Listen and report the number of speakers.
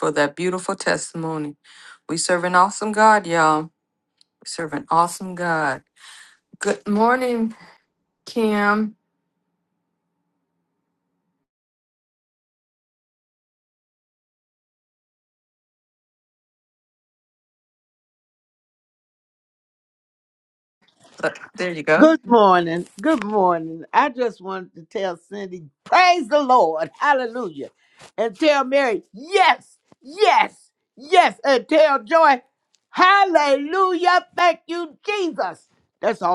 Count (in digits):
2